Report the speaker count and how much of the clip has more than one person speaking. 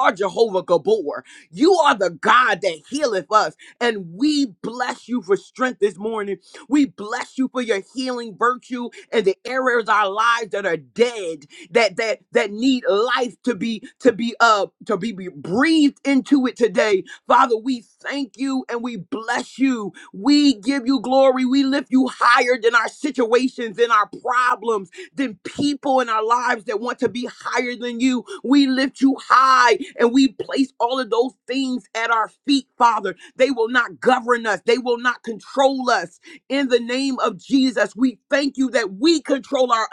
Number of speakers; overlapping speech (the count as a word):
one, no overlap